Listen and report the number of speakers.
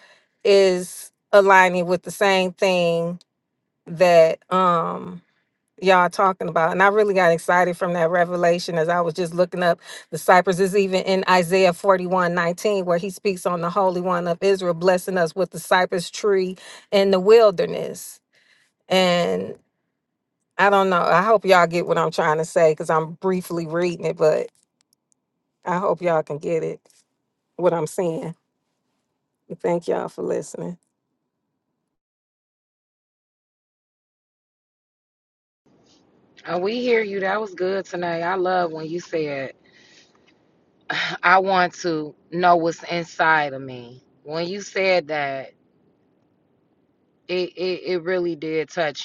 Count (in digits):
2